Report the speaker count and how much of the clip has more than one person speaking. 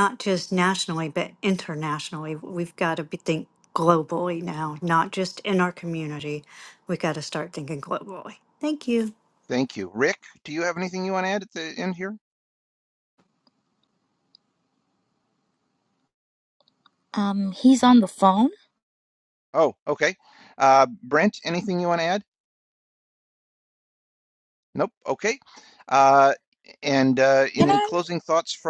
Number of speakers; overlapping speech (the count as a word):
three, about 1%